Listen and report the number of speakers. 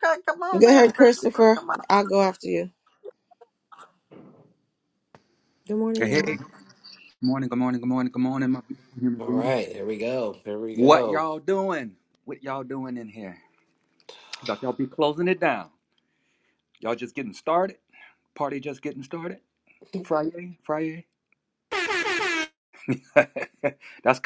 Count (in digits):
4